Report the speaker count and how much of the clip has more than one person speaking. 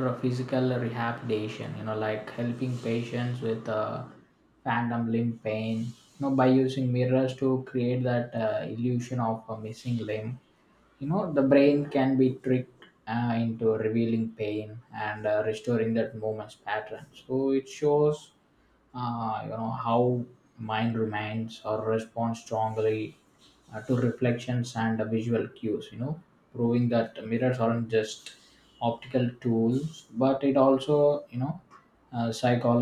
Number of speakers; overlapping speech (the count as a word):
one, no overlap